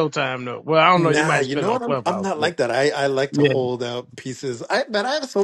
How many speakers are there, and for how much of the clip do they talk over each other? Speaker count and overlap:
2, about 33%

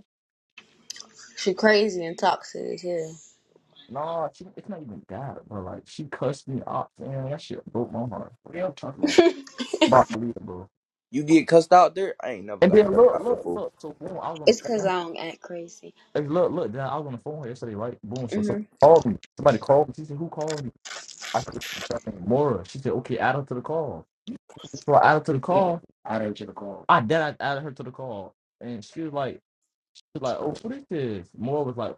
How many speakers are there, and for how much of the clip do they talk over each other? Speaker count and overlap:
3, about 6%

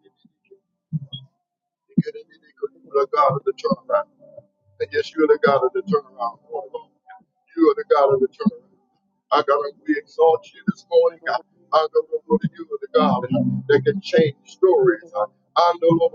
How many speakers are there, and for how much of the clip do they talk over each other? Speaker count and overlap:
1, no overlap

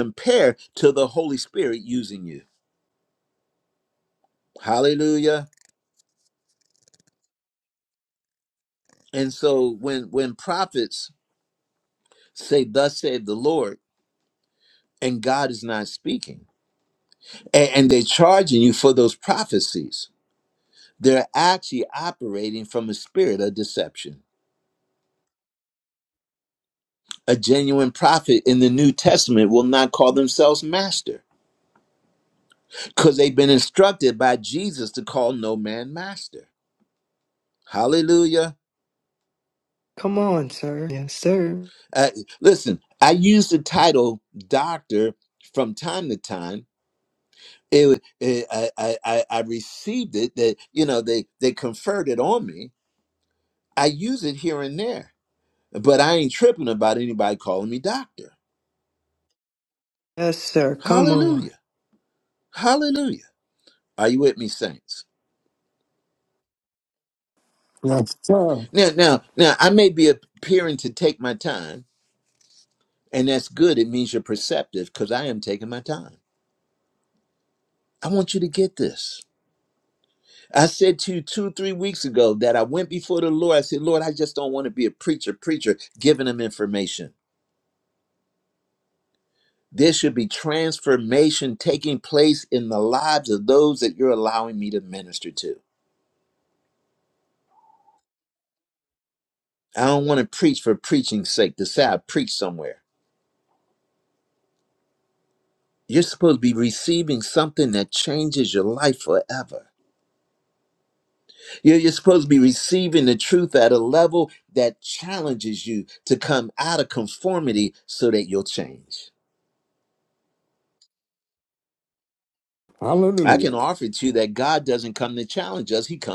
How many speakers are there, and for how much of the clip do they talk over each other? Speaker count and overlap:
3, about 1%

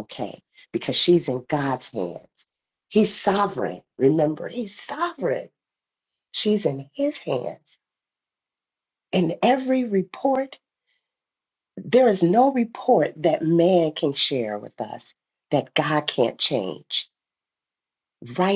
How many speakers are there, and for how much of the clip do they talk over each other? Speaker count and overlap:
1, no overlap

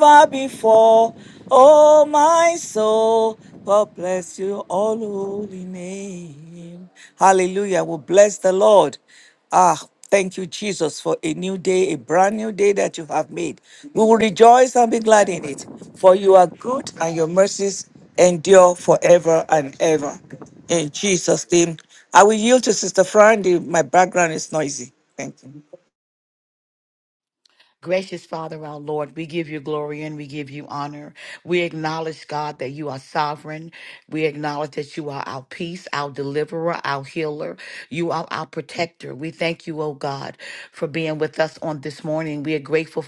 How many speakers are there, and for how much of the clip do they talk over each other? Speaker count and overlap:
2, no overlap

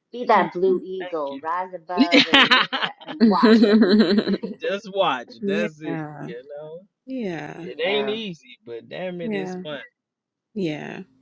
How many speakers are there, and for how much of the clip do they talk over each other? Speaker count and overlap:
3, about 24%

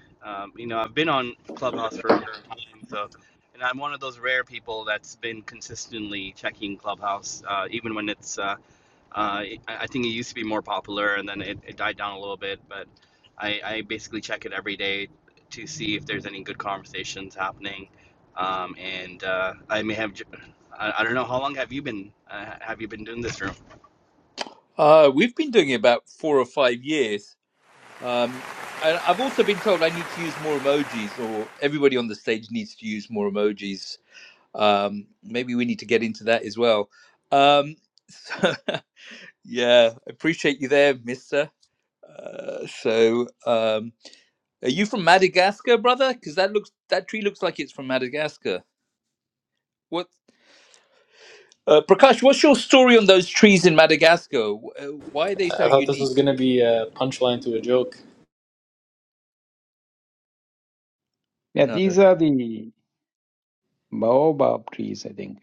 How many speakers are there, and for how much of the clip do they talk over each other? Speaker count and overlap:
4, about 1%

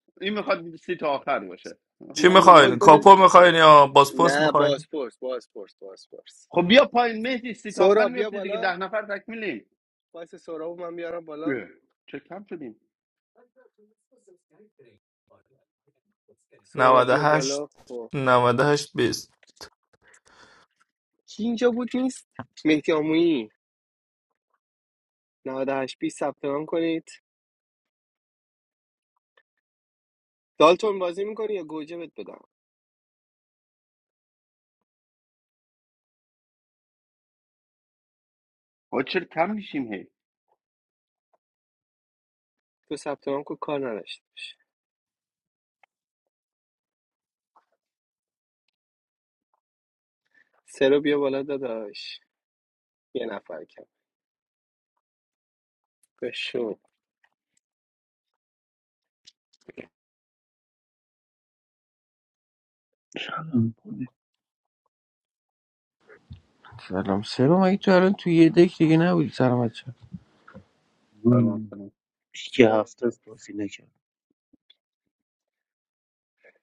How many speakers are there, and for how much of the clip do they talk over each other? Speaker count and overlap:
5, about 5%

